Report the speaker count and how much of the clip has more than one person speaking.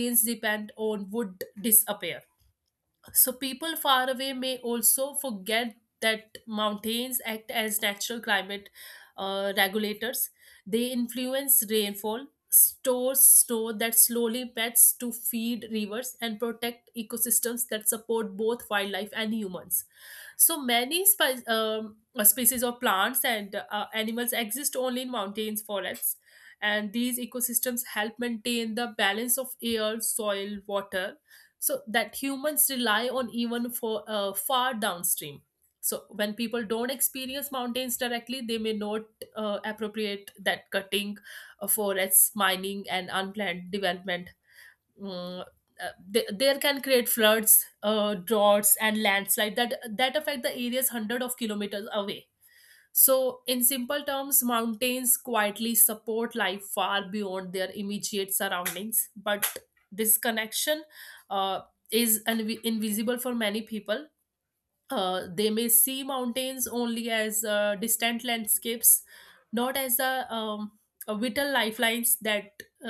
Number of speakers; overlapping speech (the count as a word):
one, no overlap